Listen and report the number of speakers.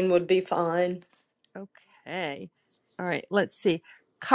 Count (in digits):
2